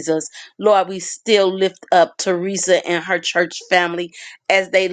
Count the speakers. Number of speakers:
1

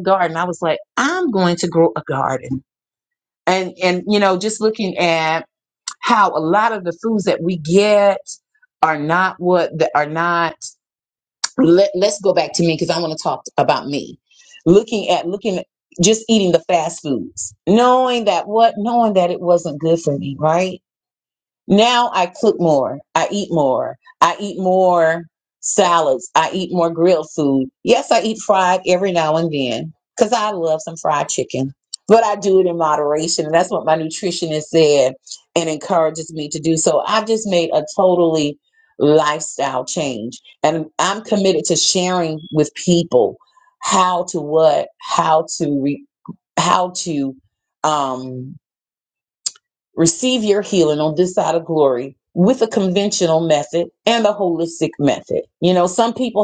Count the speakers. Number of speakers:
1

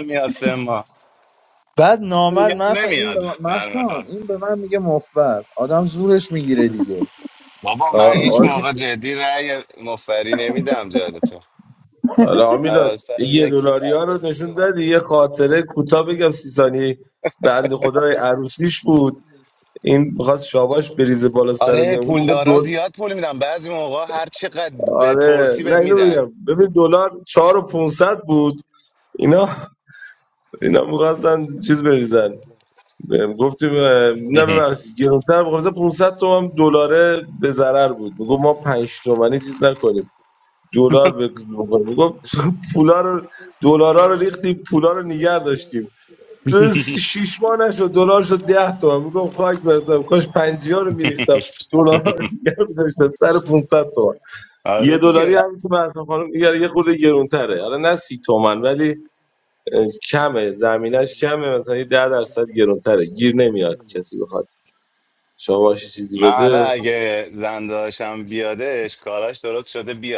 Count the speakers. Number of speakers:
3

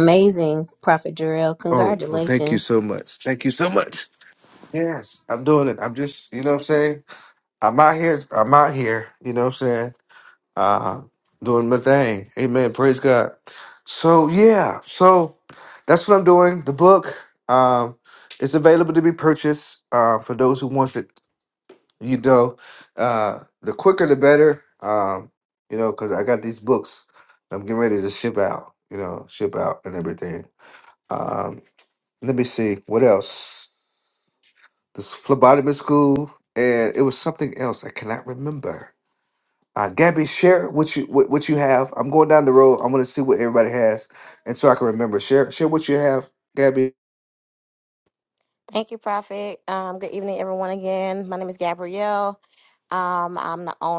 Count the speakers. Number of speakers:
3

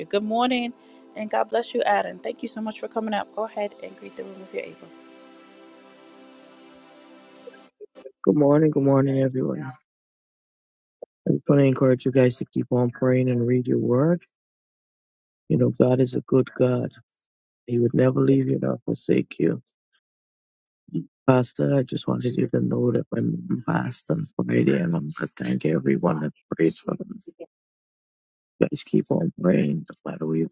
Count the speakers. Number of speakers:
2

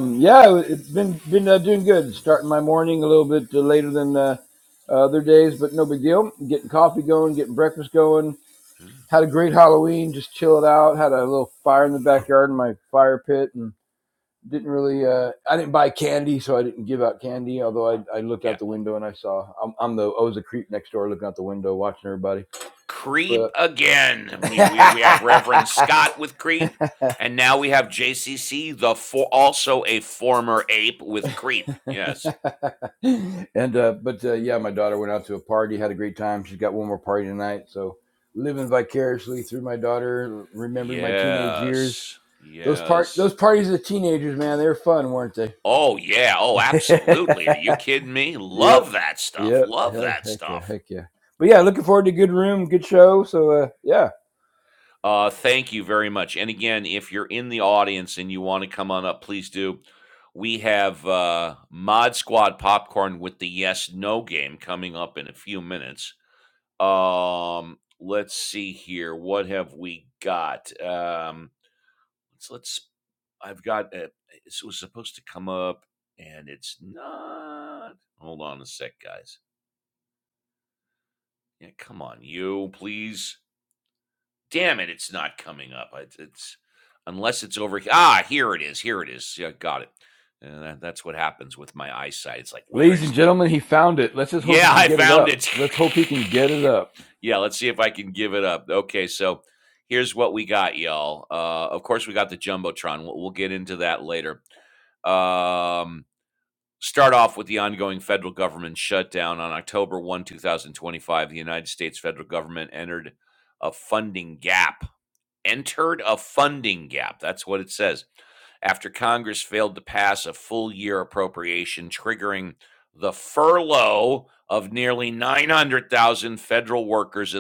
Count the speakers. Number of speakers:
2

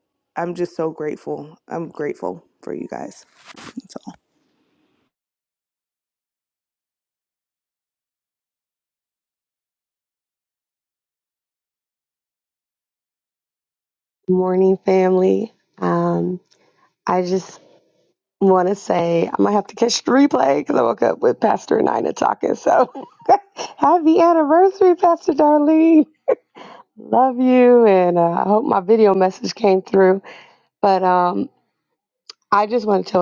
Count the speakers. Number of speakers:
2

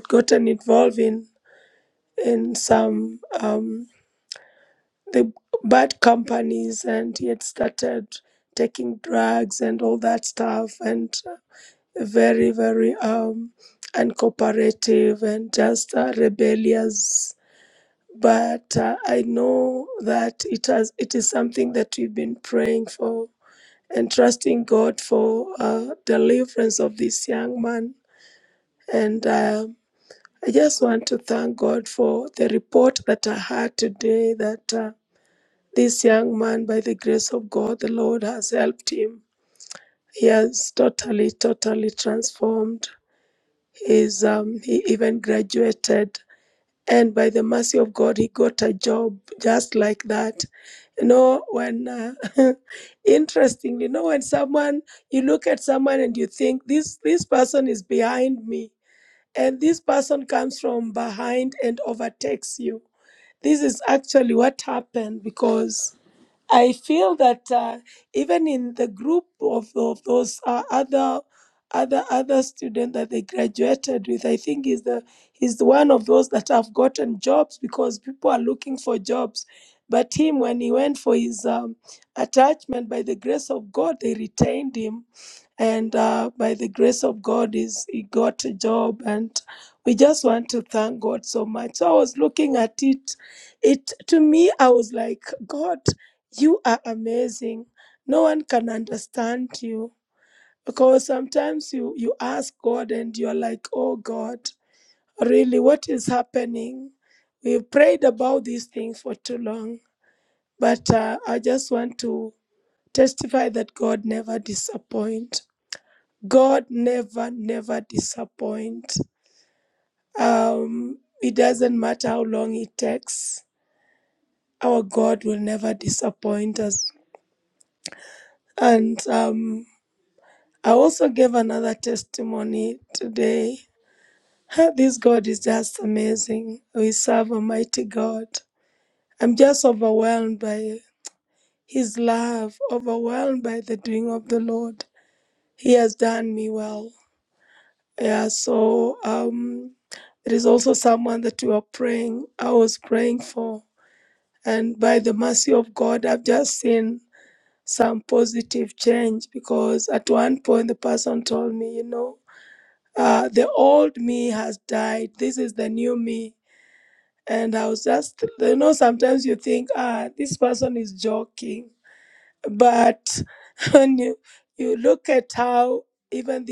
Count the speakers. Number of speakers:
1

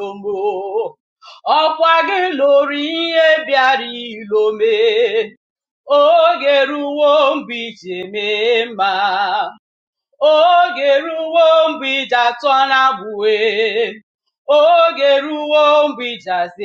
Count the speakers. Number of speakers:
1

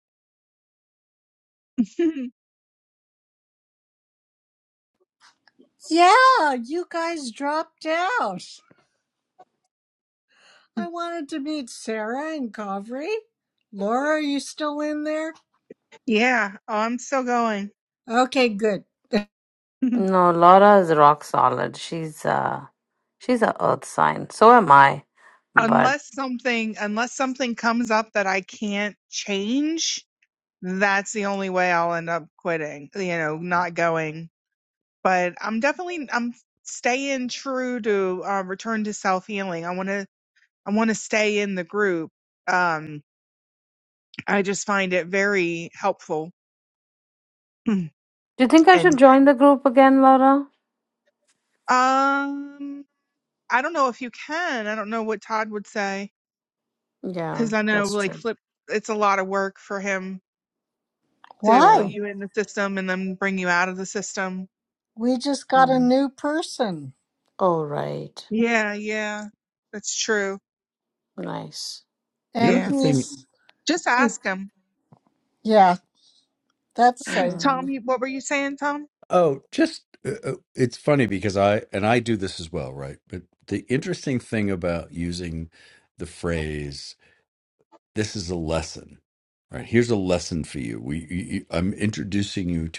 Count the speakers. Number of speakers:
4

